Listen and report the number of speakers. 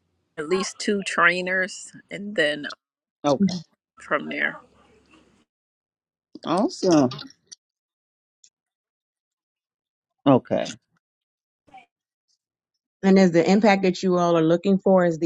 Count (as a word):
three